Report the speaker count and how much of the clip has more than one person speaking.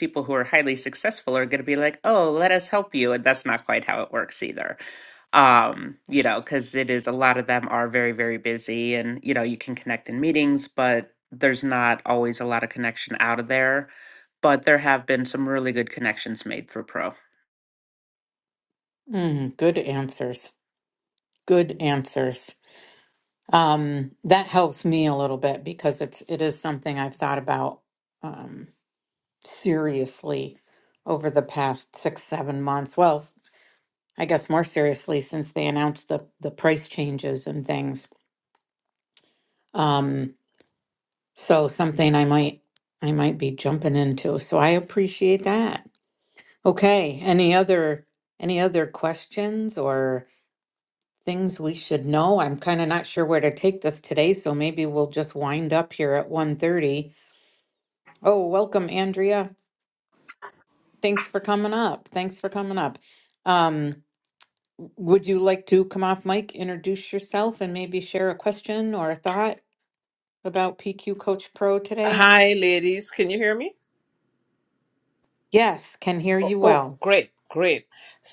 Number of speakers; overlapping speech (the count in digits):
3, about 1%